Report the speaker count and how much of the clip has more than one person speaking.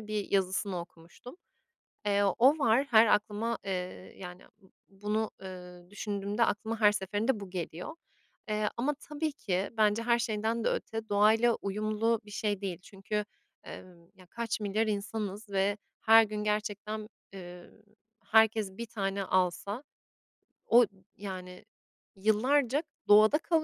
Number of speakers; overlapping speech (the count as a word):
one, no overlap